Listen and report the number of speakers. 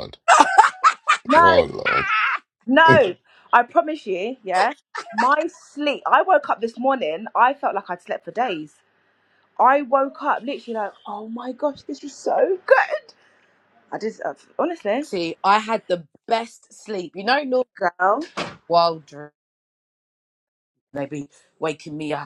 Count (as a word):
three